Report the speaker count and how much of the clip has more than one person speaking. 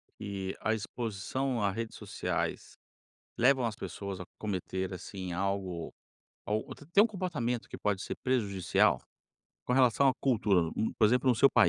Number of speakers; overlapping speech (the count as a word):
one, no overlap